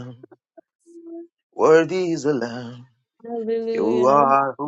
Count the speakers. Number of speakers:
two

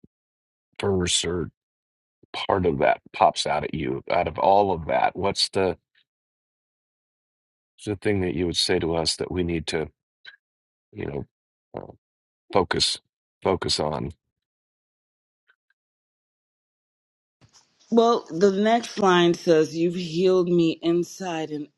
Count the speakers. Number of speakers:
two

